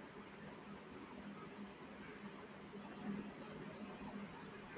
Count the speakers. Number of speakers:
0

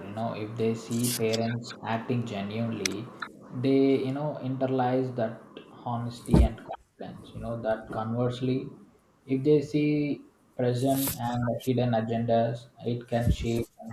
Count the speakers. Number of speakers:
1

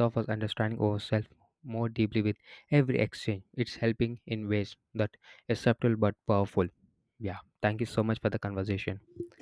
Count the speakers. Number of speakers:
1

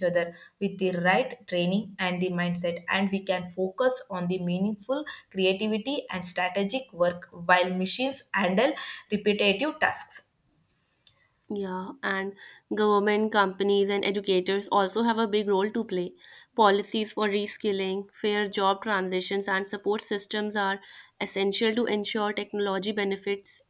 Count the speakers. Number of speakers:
2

